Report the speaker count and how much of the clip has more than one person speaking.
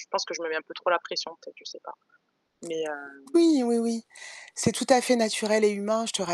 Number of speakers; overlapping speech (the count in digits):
2, no overlap